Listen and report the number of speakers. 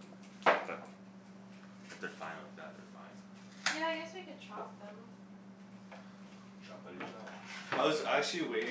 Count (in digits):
3